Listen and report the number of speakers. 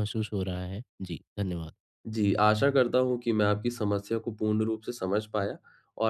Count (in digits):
2